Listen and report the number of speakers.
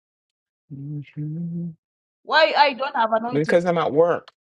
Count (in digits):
2